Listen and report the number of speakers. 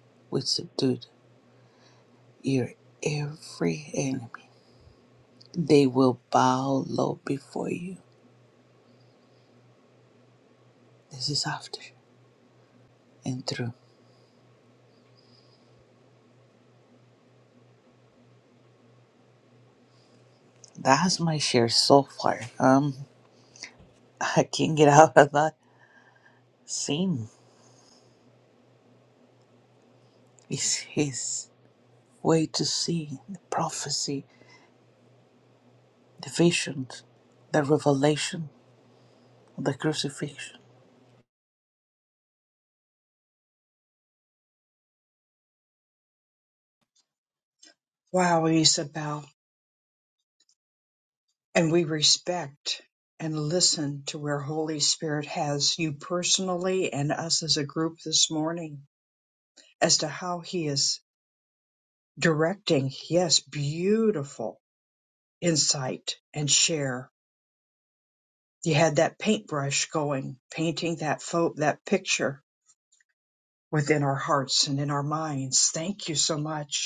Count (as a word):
two